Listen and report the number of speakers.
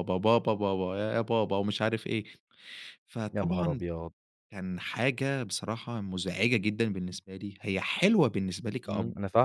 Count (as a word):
two